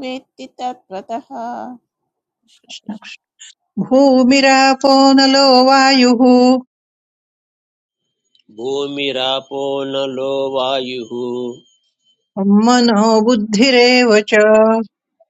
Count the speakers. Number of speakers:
3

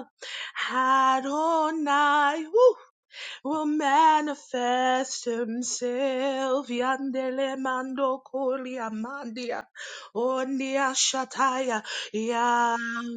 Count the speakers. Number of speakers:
1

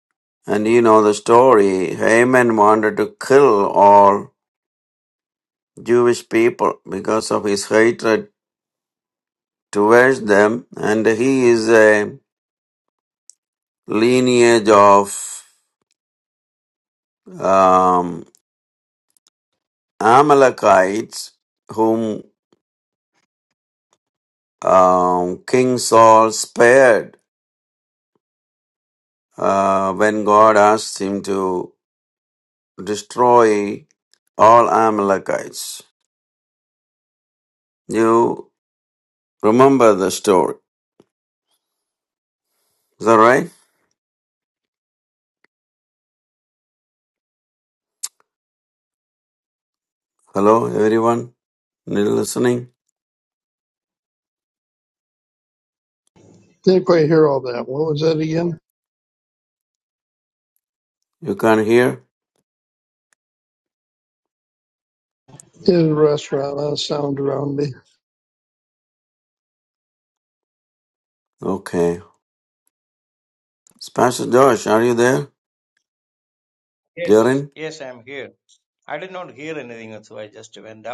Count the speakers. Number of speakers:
3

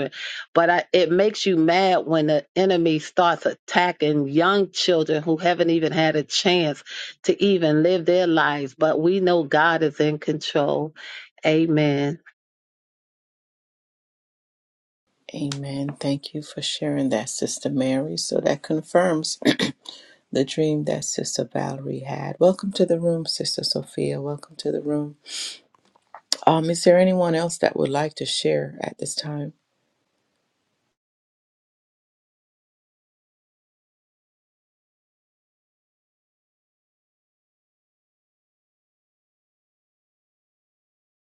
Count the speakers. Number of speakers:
2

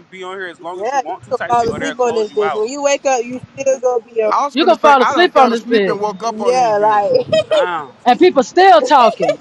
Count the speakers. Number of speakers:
4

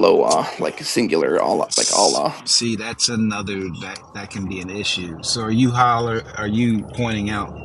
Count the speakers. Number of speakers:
2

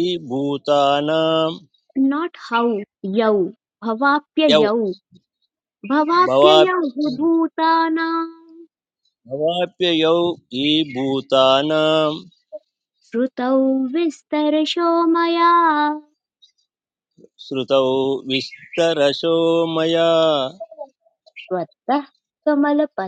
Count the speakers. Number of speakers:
2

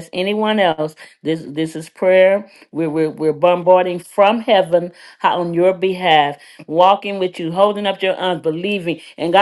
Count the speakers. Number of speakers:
1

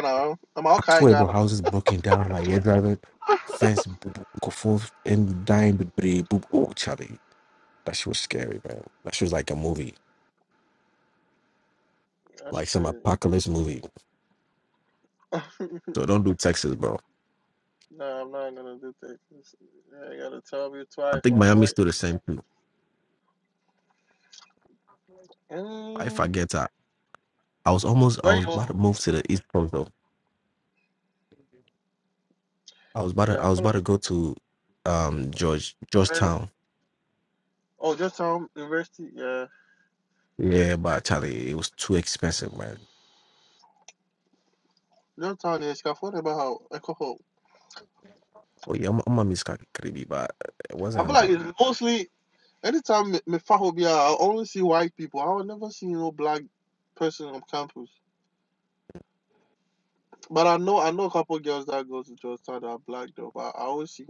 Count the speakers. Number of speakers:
2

